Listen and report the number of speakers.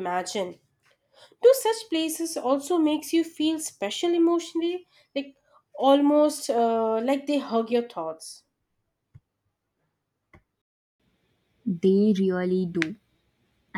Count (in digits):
2